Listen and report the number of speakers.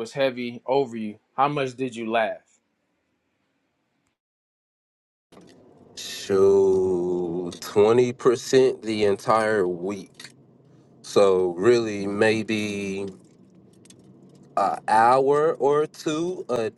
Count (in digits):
2